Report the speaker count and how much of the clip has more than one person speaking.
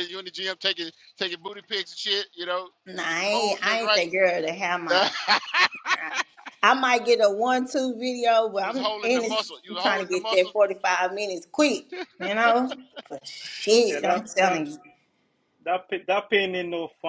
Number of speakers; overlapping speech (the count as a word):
three, about 21%